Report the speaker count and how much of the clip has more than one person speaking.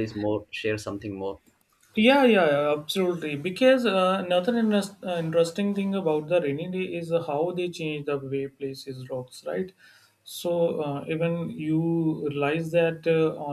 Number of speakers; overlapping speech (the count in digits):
2, no overlap